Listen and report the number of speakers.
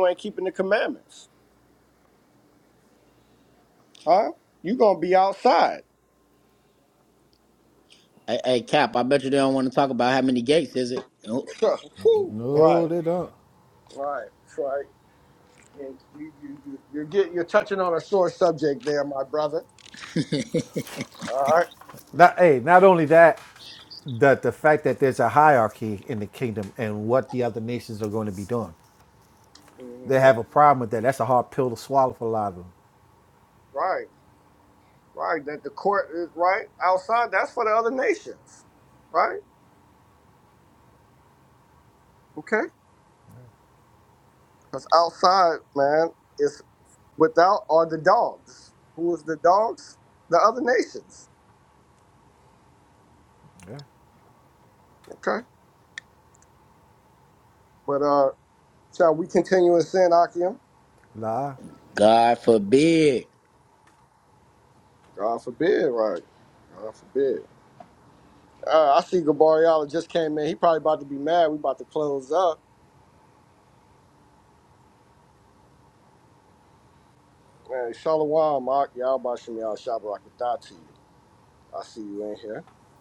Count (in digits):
3